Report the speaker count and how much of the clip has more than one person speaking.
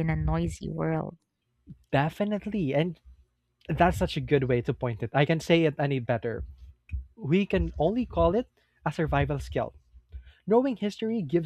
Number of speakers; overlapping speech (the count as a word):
two, no overlap